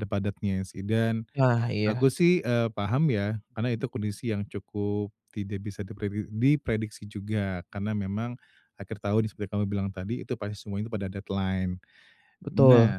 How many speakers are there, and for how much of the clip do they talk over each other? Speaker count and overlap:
2, about 5%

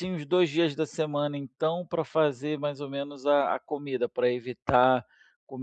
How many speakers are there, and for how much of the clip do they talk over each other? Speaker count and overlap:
1, no overlap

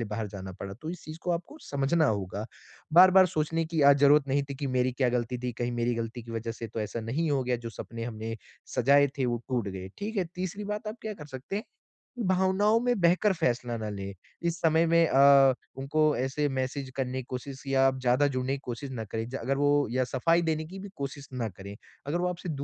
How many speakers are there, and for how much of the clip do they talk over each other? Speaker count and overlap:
1, no overlap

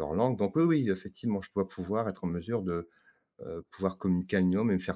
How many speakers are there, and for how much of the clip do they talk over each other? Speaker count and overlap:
1, no overlap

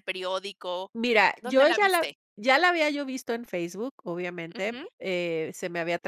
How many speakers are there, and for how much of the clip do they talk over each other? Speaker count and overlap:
2, about 17%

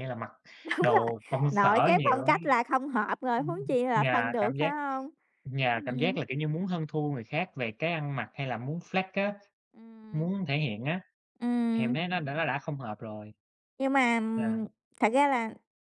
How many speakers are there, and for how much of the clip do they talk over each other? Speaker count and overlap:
2, about 17%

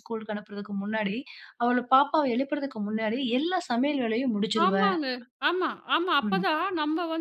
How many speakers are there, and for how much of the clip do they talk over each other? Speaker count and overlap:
2, about 8%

